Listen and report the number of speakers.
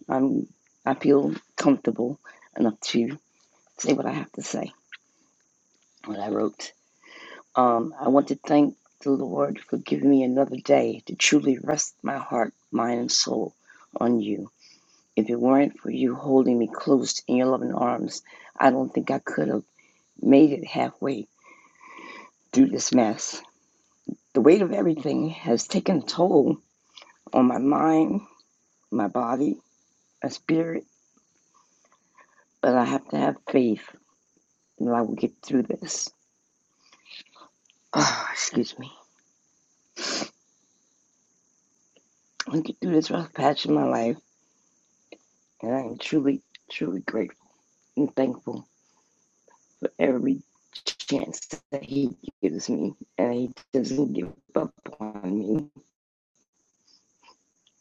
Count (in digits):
1